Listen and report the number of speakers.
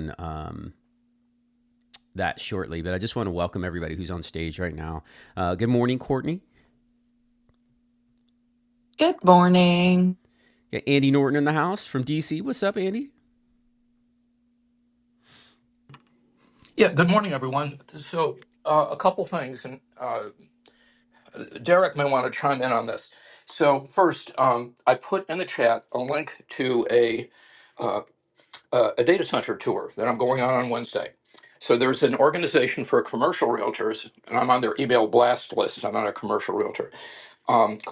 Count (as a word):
three